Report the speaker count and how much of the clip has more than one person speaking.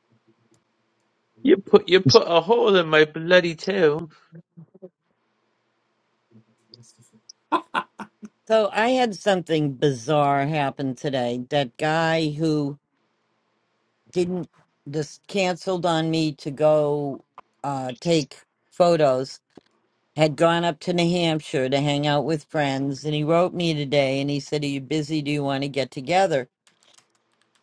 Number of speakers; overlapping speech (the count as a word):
two, no overlap